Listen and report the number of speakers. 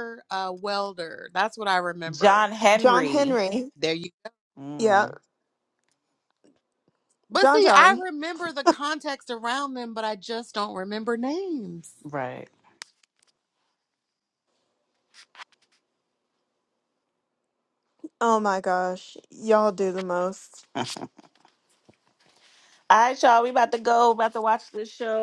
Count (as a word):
three